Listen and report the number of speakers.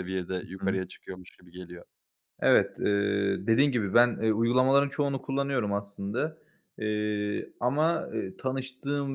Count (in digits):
2